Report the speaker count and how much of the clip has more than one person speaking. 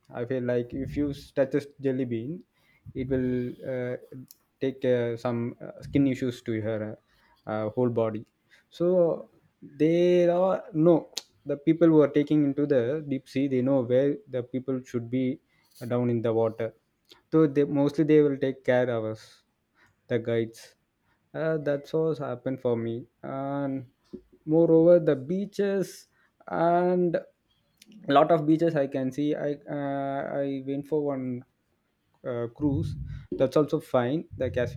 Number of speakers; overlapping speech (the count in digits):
1, no overlap